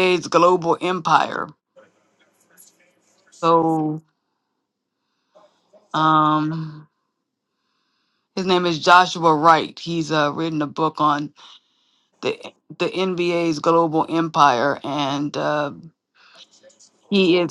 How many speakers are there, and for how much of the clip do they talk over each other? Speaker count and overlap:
1, no overlap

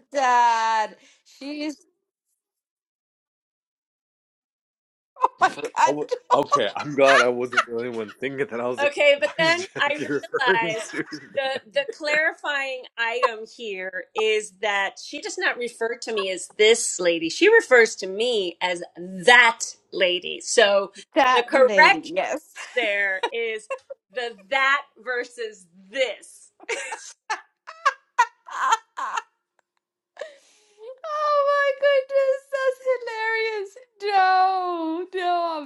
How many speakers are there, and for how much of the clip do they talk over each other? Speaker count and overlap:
3, about 8%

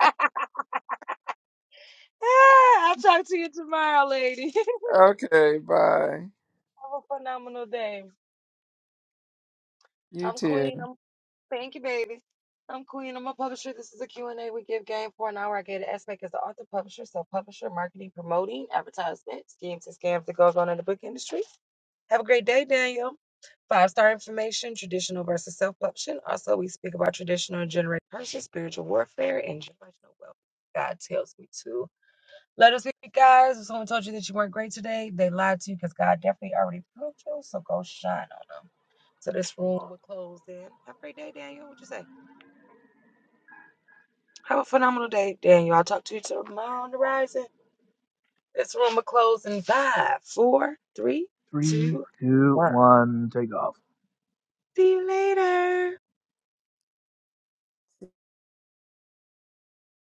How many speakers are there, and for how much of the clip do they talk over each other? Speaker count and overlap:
3, about 2%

